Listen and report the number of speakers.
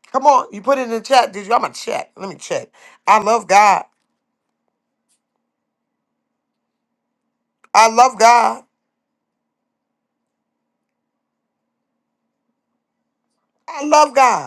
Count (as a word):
one